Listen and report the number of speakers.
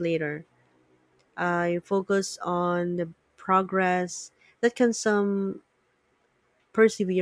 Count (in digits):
1